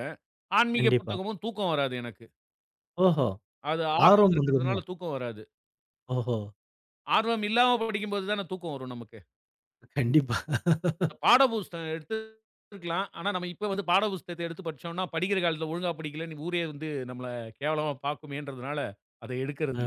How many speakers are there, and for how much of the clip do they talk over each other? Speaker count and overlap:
2, about 6%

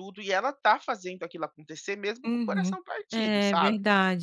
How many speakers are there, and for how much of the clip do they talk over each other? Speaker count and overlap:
2, about 26%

